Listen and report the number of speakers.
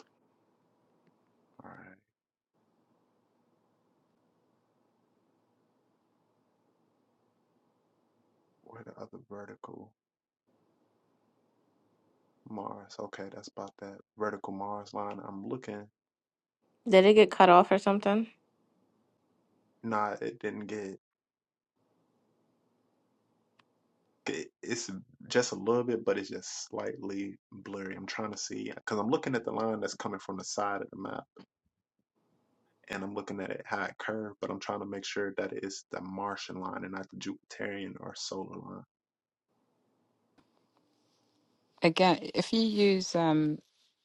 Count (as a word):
three